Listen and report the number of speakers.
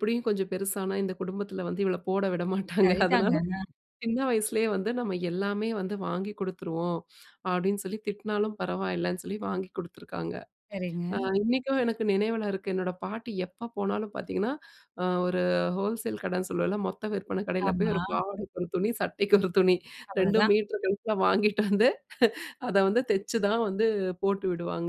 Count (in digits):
2